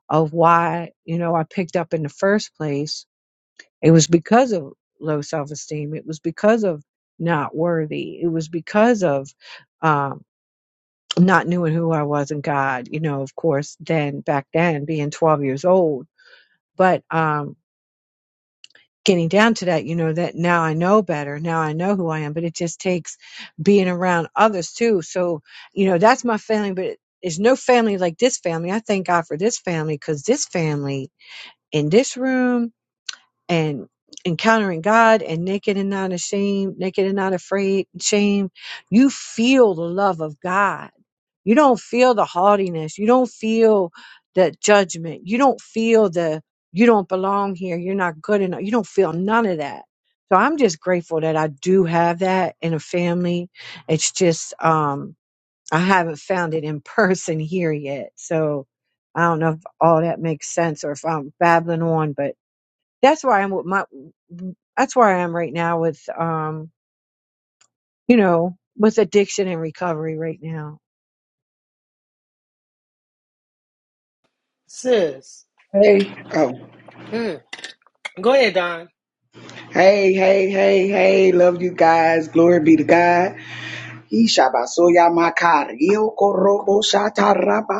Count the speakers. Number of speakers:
3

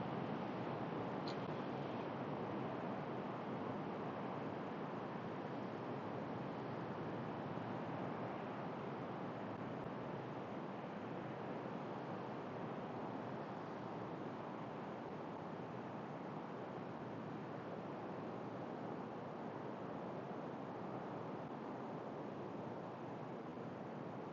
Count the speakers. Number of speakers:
0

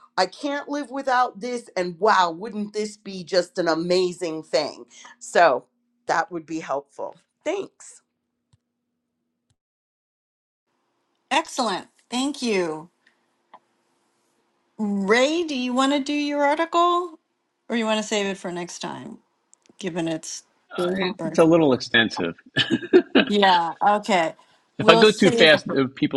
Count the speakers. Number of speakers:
3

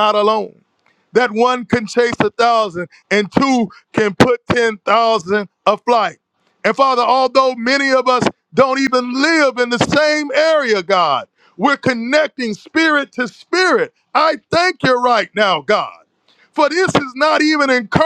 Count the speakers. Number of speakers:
1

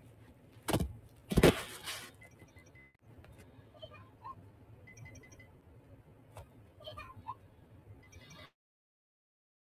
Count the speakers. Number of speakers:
0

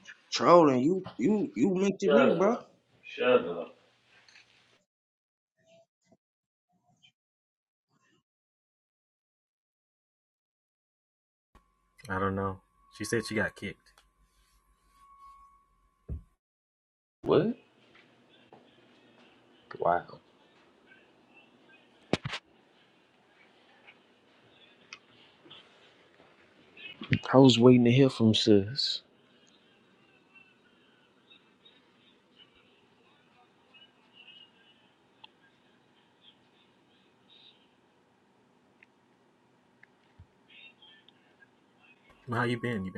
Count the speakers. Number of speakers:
3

